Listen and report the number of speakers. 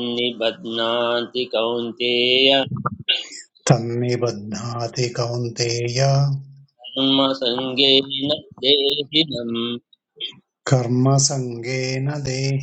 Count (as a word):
two